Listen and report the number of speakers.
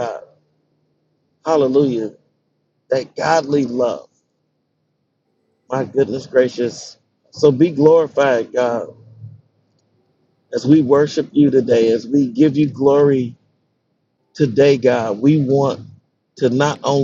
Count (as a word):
one